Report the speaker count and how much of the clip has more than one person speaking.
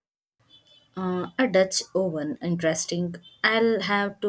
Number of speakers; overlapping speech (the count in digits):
1, no overlap